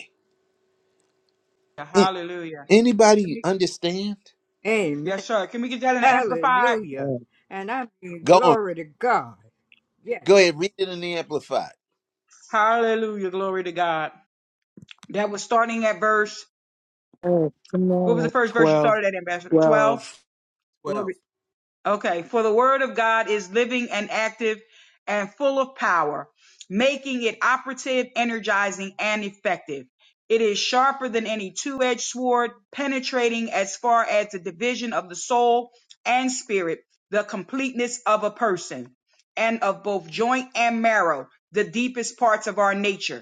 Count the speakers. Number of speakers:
four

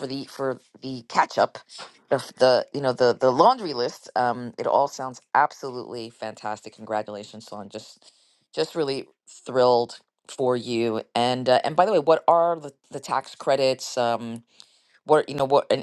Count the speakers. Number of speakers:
one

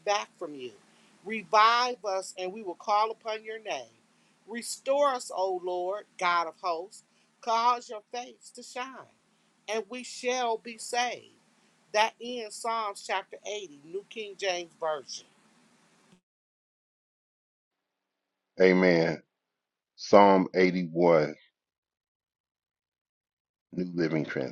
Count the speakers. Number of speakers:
two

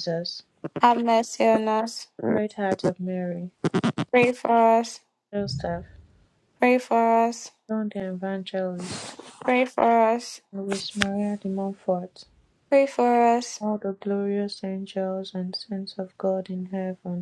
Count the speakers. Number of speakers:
two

